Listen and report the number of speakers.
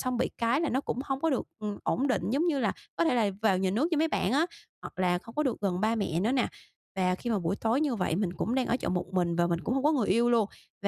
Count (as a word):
one